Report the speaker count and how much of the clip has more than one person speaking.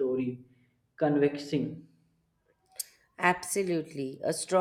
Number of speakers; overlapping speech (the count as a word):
two, no overlap